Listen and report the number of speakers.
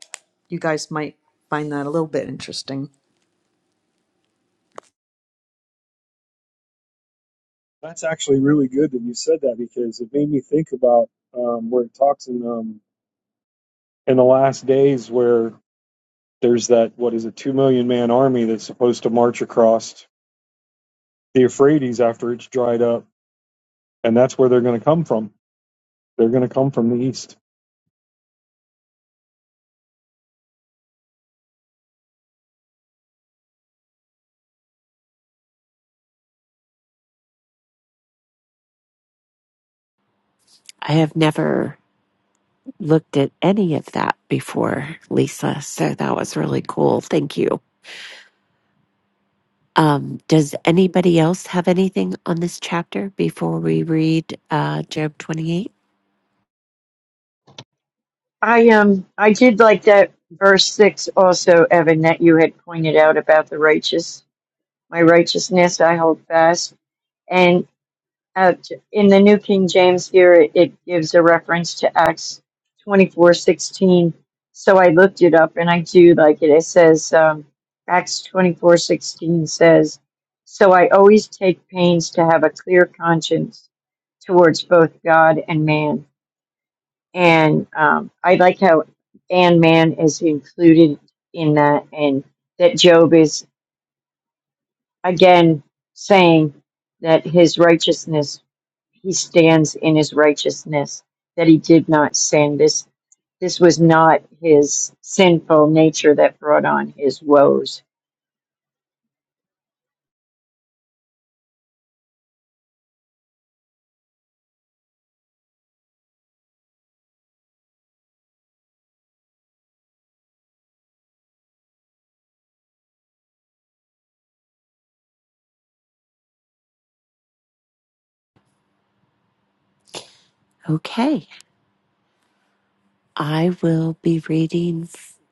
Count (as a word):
four